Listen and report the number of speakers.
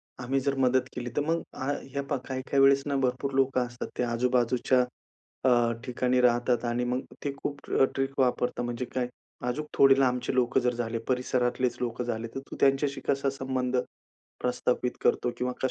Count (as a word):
one